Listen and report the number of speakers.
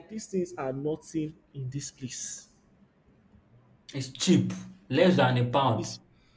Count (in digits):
2